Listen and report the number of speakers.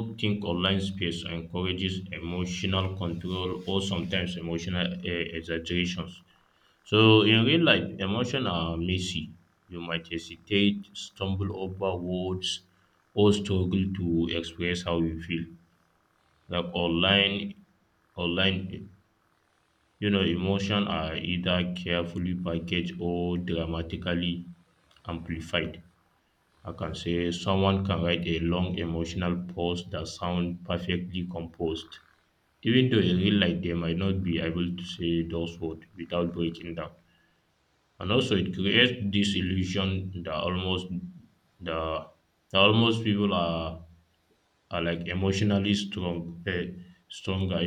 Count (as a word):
one